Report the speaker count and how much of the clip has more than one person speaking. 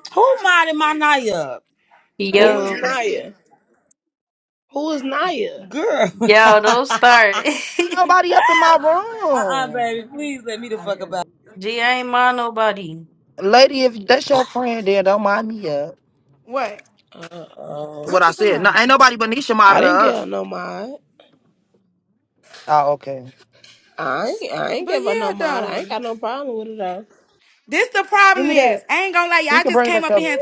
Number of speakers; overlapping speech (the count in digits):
5, about 15%